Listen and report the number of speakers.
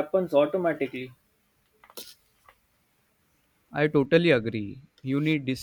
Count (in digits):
2